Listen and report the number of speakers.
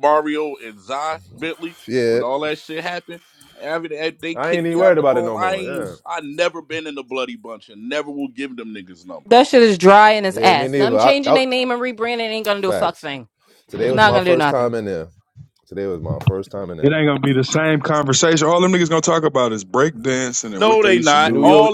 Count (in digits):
4